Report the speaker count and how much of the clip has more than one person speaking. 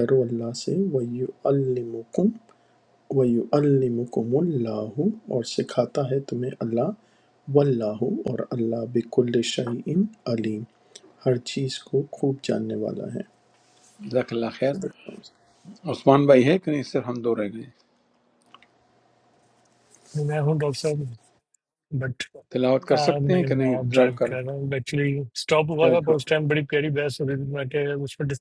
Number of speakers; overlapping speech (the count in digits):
3, about 6%